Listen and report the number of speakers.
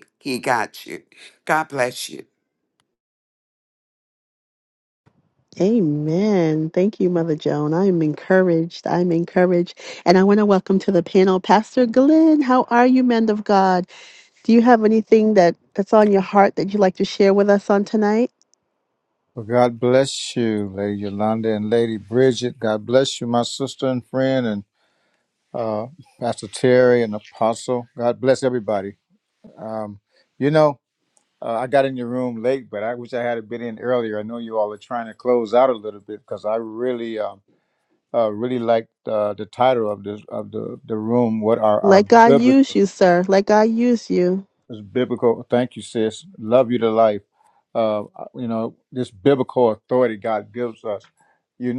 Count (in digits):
3